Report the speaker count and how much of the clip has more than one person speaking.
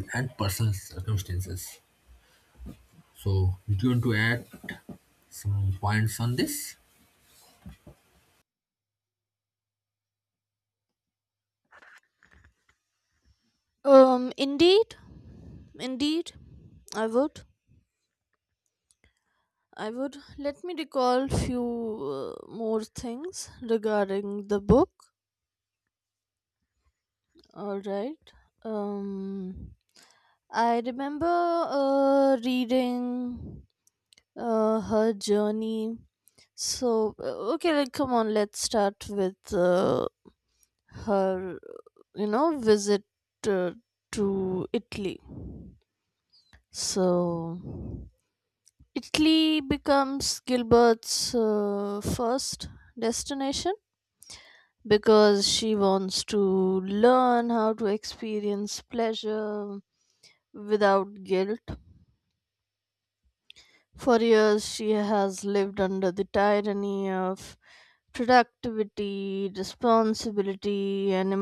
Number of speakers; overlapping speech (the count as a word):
two, no overlap